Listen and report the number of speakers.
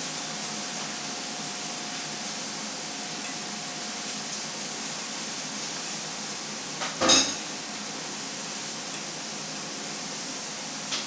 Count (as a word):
zero